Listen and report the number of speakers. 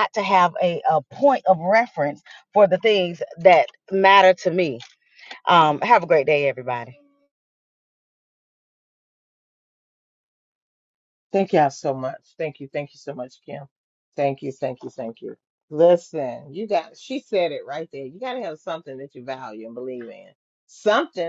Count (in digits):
2